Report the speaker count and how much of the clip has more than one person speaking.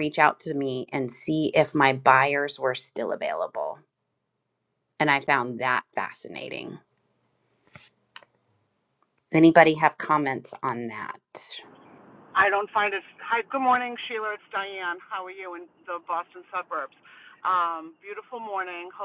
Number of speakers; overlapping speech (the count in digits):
2, no overlap